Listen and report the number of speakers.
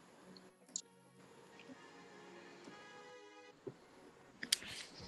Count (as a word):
zero